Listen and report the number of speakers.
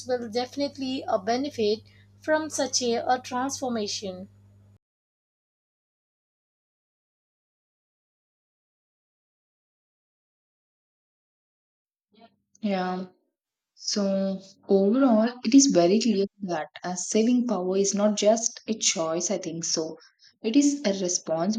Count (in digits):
2